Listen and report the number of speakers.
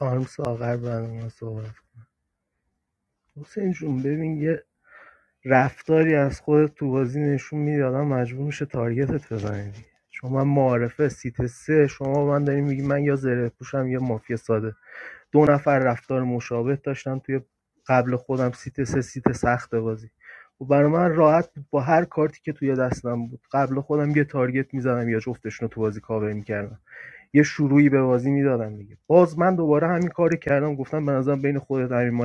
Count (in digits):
1